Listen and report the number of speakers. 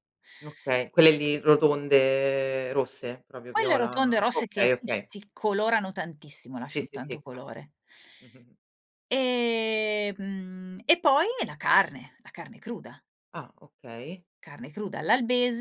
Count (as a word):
two